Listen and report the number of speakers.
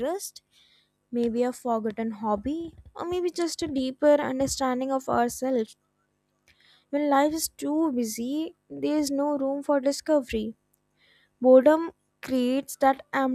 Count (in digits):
1